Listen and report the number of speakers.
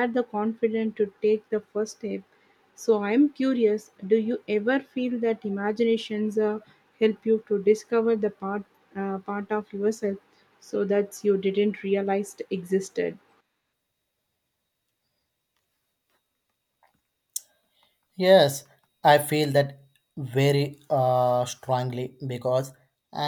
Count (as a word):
two